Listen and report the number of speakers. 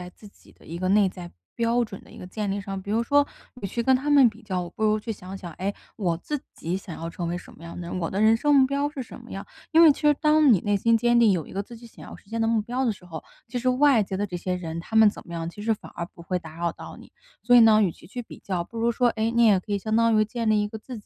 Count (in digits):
1